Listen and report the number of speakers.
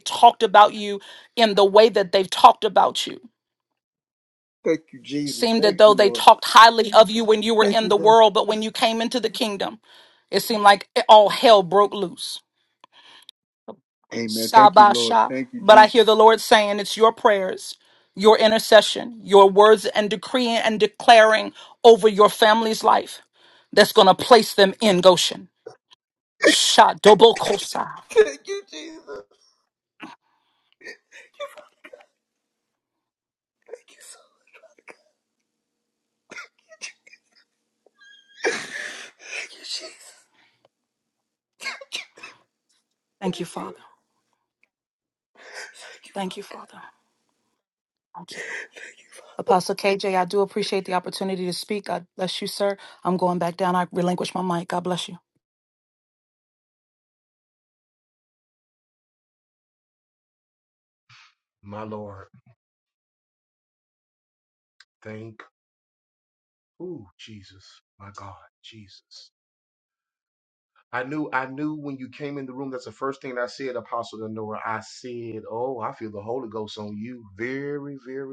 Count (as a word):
three